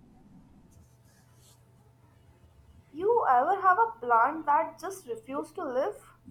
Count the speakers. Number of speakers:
1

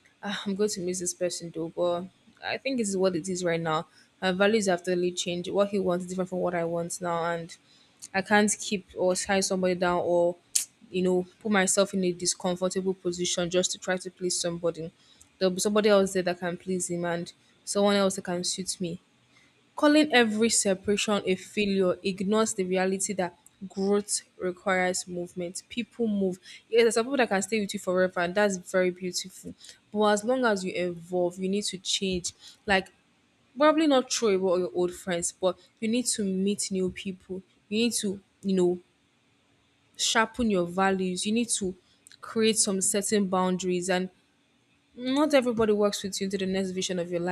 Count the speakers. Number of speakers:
1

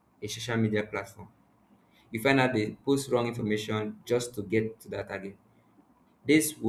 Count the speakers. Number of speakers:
1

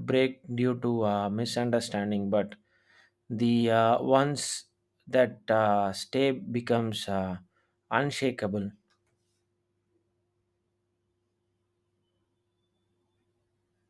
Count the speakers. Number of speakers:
1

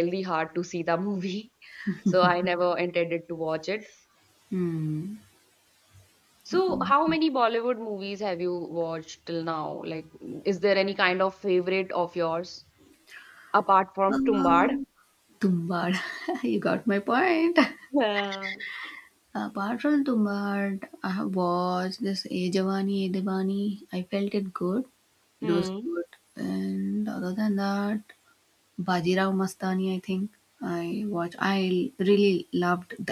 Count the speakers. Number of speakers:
2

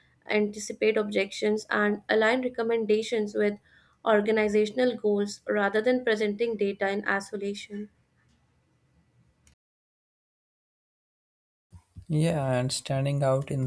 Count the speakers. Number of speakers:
2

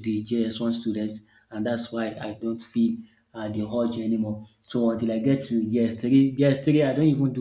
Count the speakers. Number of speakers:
1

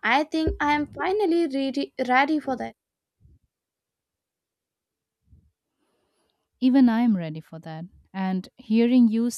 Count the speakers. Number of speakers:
2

